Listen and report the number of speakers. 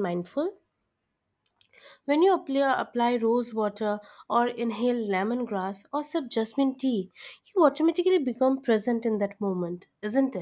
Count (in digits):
1